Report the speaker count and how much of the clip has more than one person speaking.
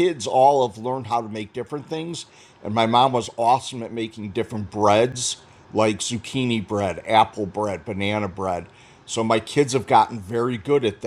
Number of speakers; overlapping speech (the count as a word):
one, no overlap